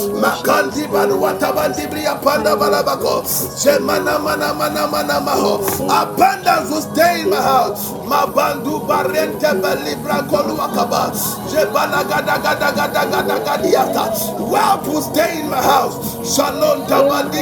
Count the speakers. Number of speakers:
2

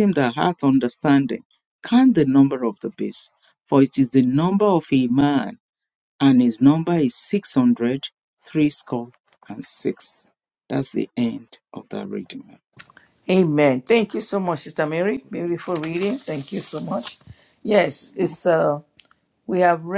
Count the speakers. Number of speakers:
2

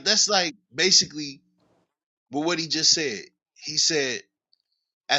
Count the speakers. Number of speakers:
1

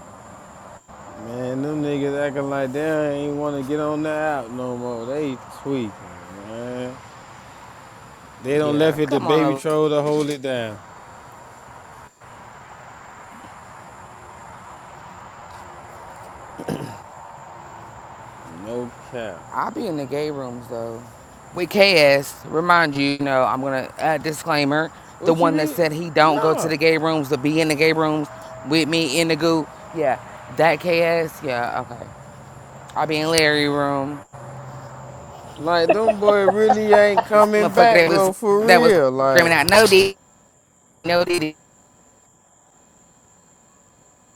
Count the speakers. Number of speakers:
2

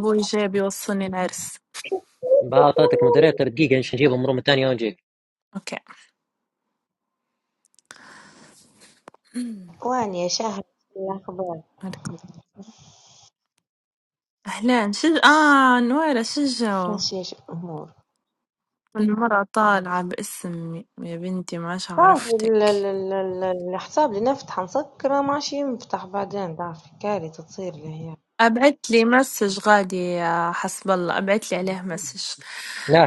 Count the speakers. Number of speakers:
3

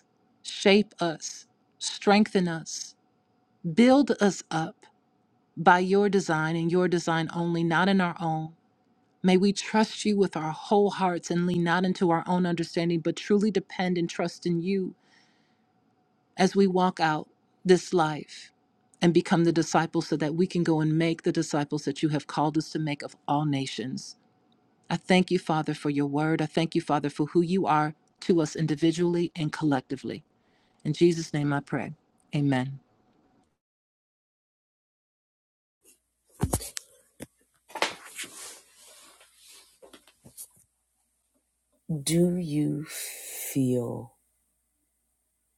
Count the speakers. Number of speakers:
2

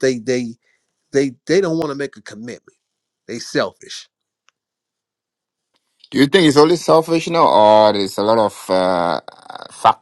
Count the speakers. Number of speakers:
2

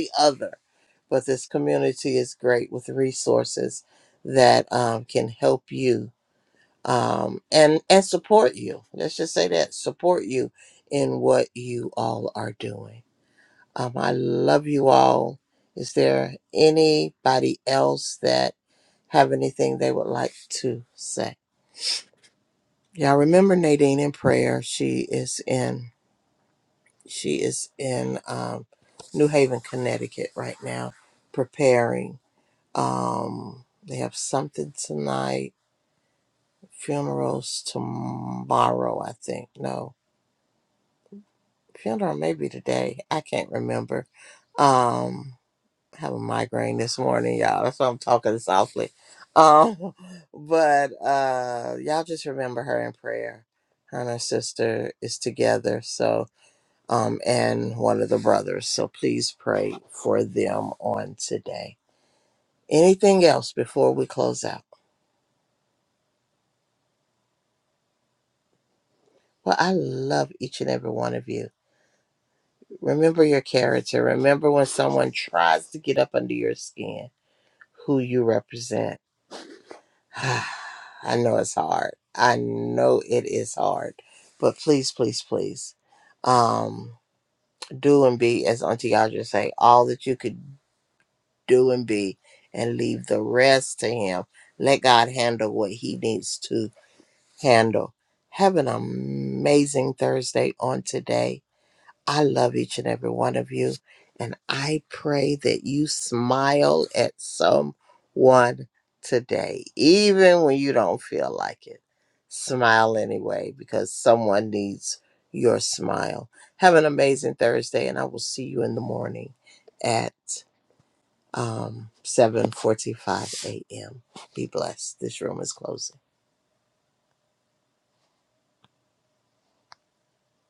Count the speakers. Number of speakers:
1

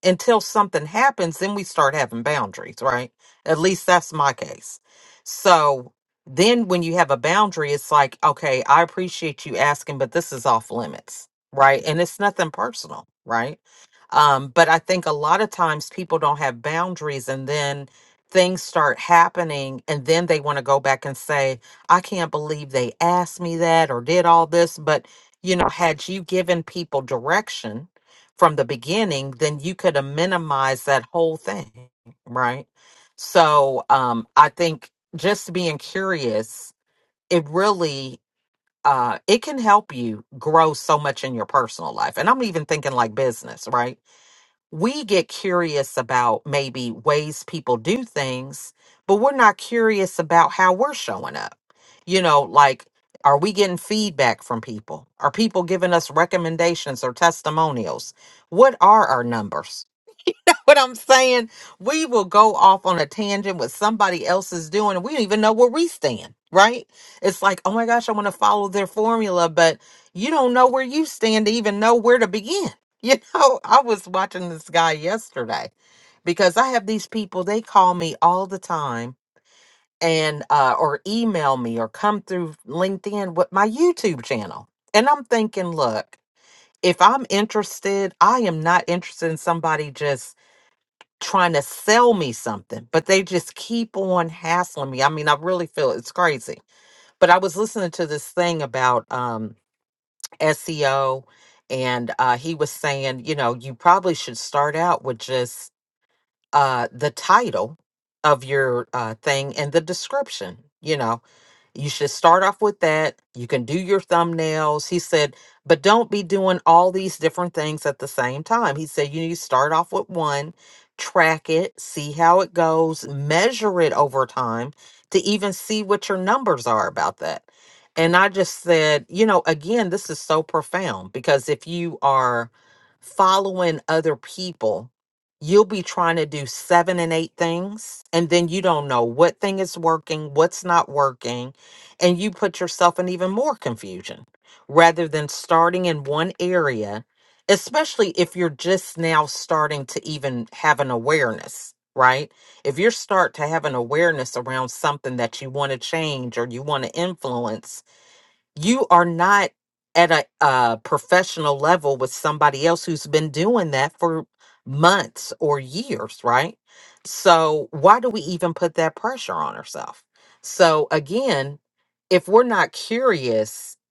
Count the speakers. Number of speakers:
1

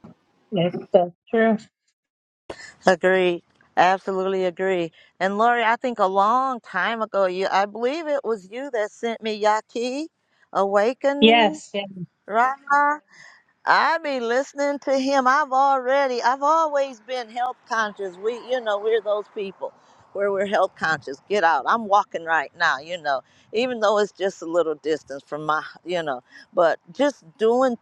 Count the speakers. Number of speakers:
2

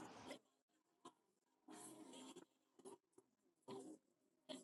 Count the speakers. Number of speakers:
0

